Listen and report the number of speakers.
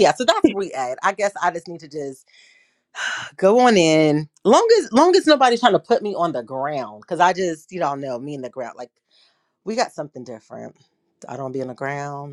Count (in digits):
1